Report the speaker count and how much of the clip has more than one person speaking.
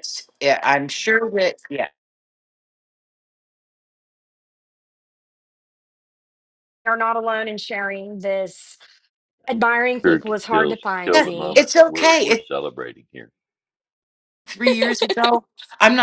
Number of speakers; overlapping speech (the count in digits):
3, about 15%